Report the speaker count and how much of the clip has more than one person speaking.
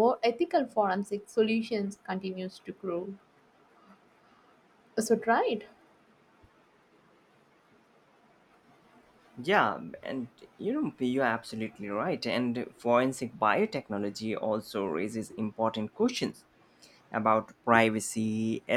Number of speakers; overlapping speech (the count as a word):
two, no overlap